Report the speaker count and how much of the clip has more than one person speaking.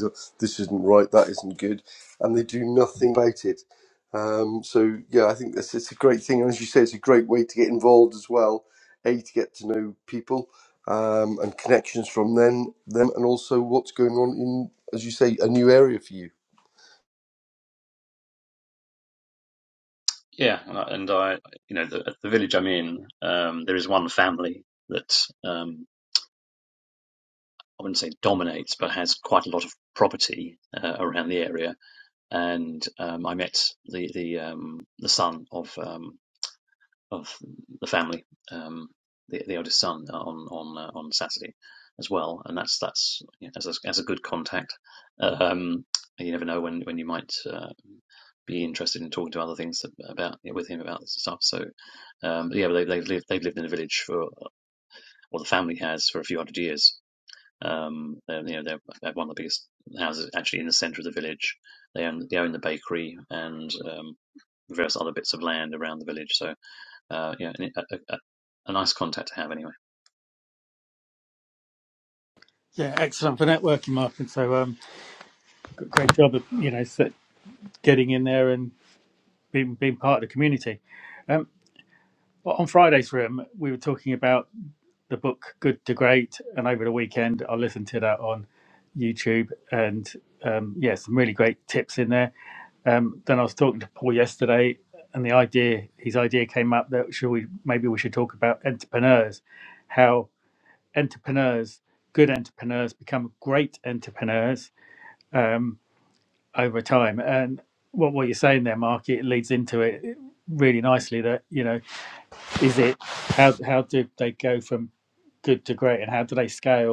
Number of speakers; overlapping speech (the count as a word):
three, no overlap